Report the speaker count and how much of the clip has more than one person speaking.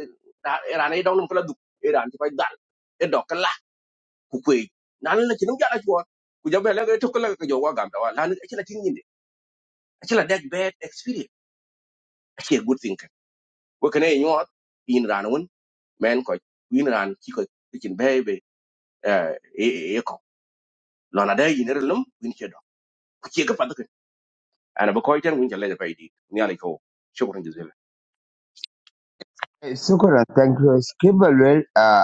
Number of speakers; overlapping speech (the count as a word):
two, no overlap